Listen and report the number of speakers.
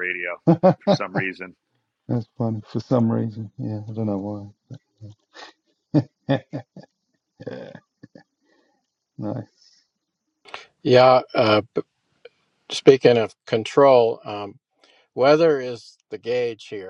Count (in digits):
3